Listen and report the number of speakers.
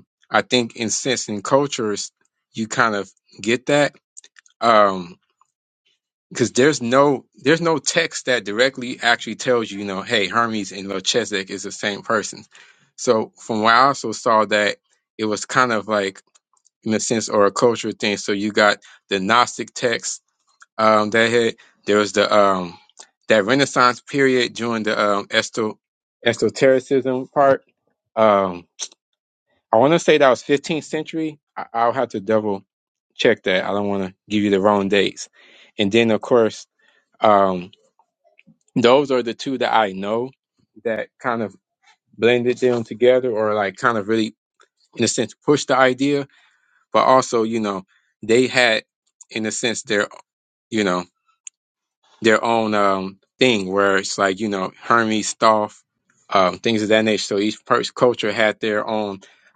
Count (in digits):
1